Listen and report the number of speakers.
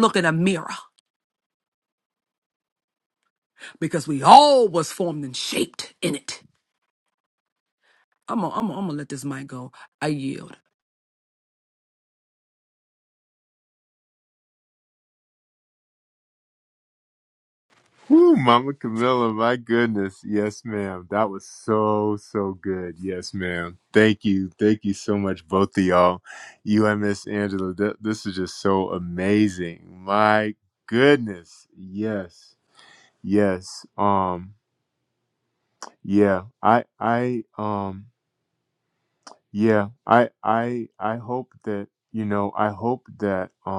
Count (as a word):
two